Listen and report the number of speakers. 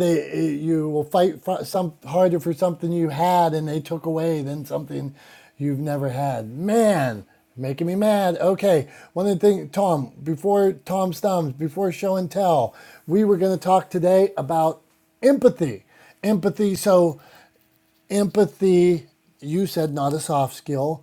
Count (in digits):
1